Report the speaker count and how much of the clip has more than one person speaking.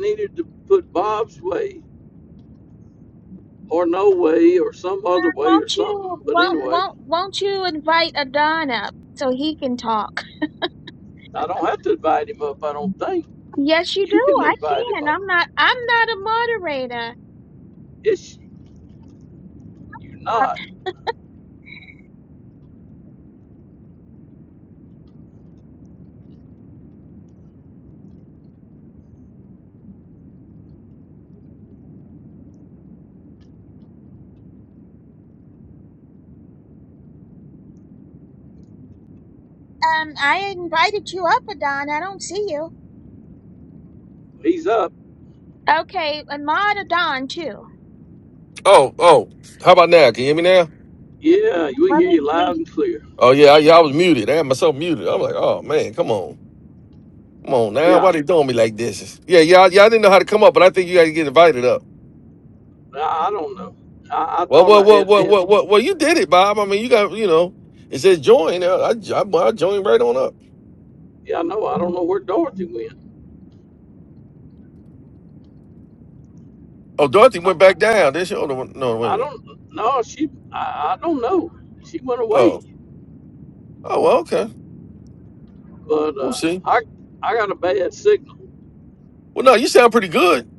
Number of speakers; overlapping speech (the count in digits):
3, about 6%